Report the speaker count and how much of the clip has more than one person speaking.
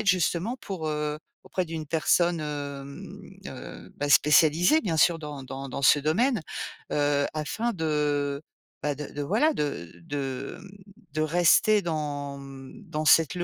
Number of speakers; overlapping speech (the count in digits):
1, no overlap